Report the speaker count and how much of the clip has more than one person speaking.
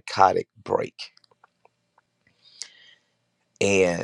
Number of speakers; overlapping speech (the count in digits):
1, no overlap